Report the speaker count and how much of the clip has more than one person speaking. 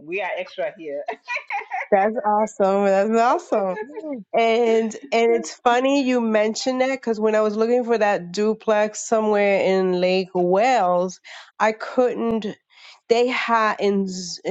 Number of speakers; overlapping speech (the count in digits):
2, no overlap